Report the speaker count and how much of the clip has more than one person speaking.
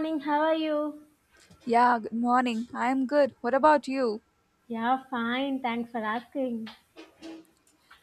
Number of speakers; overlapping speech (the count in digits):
2, no overlap